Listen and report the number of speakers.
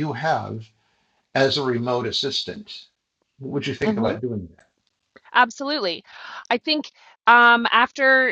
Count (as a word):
two